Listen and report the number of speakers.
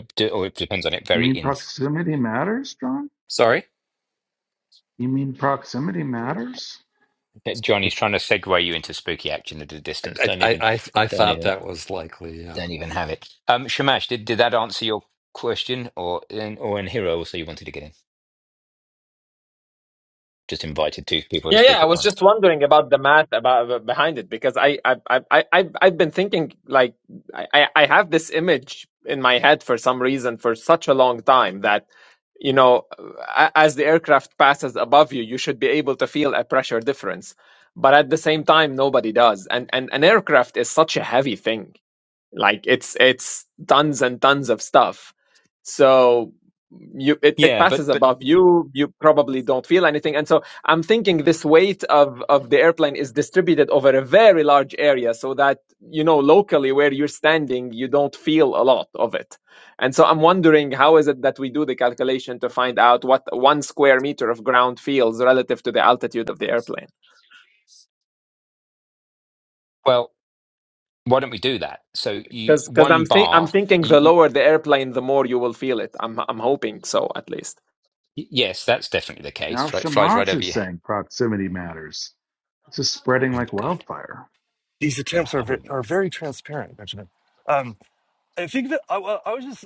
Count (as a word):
five